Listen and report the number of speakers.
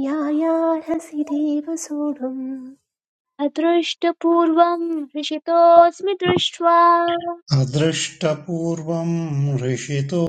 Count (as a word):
three